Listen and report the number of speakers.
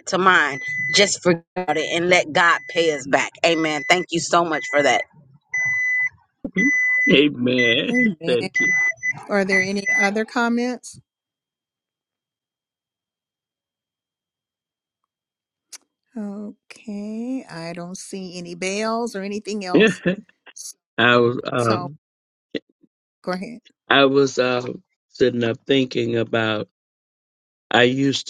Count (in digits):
3